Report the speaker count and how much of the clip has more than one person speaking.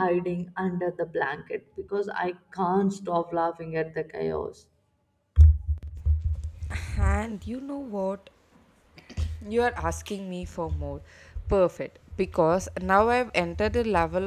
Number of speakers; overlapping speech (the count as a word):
two, no overlap